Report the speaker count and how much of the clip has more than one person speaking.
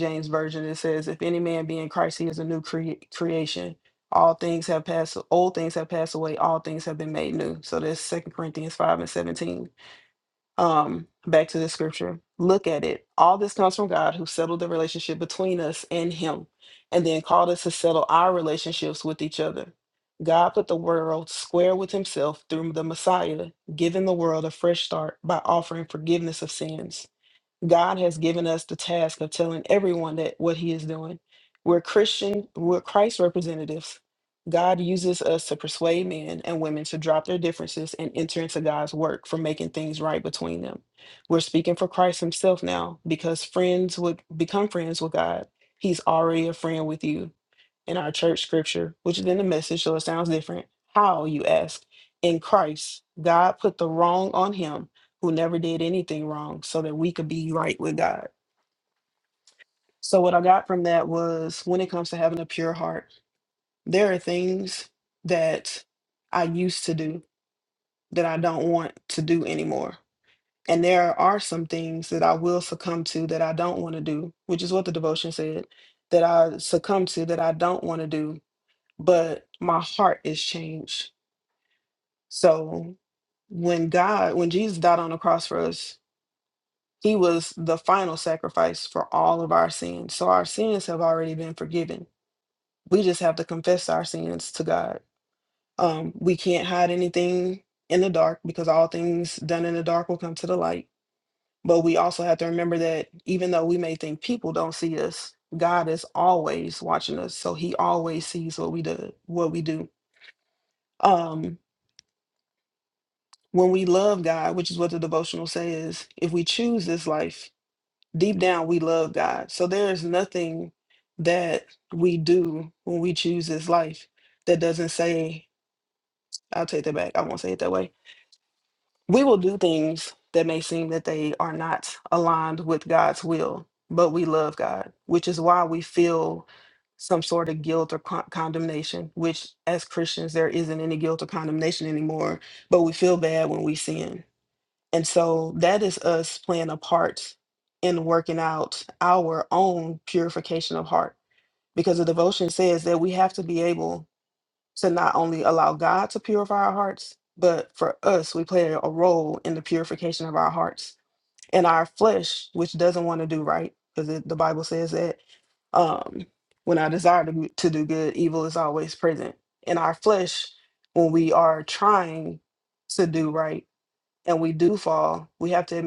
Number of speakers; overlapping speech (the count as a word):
one, no overlap